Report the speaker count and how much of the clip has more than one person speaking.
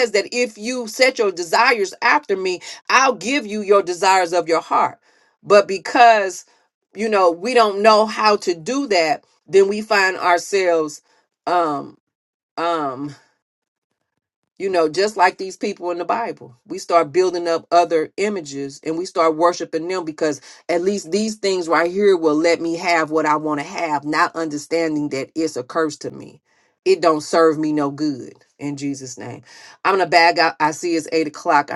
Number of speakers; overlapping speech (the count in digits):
1, no overlap